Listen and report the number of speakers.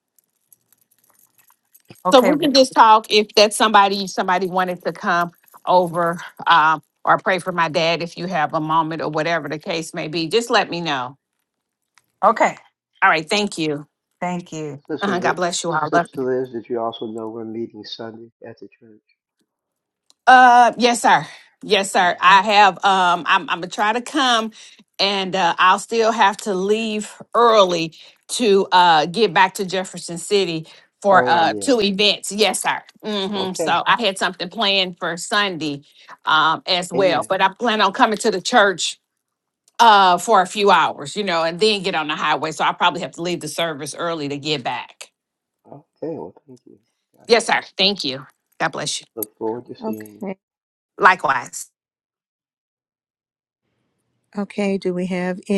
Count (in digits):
4